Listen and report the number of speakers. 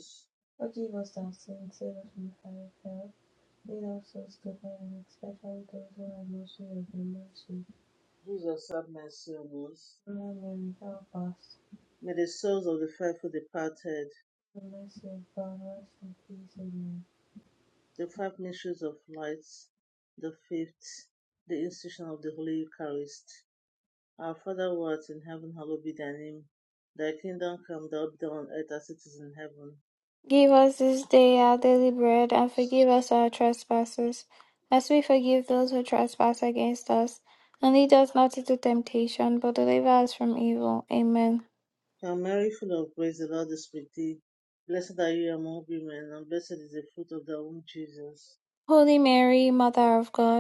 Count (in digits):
3